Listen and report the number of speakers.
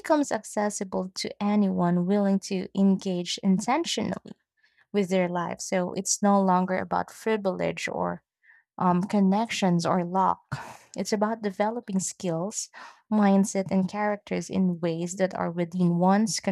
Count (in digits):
1